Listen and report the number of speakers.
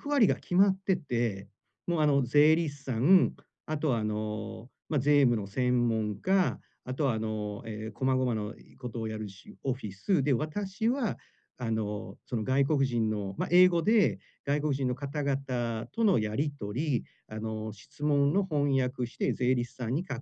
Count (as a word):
one